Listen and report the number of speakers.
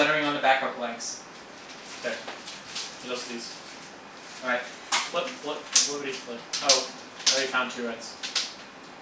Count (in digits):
2